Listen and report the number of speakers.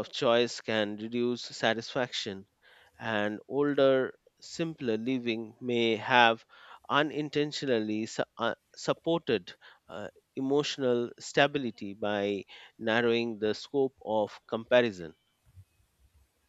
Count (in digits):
1